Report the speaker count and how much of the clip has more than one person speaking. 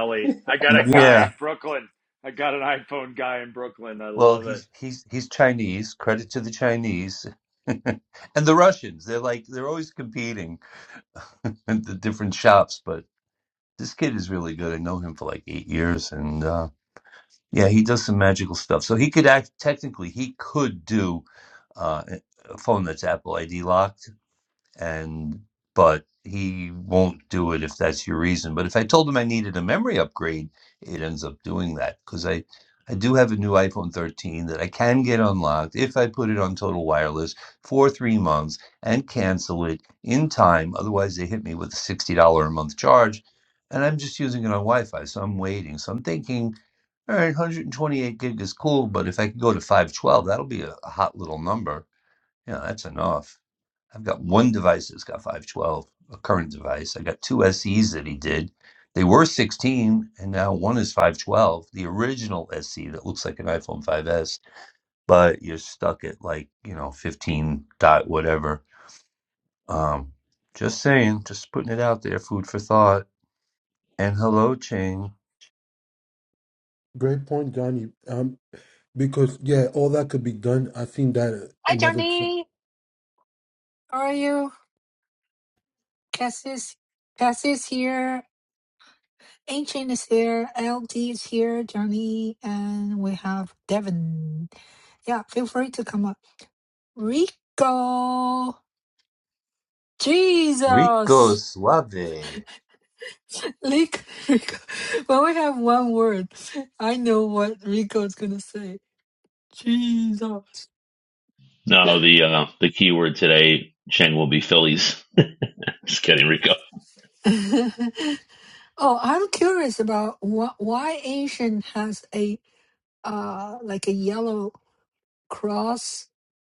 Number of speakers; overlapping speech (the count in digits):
5, about 1%